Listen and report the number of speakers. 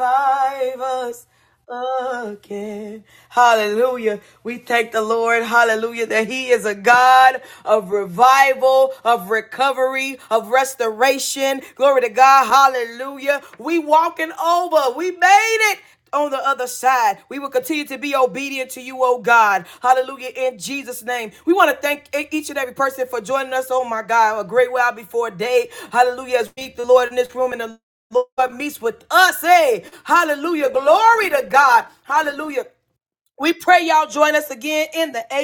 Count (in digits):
1